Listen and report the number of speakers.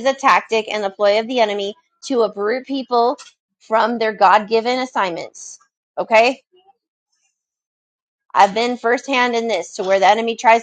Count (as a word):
one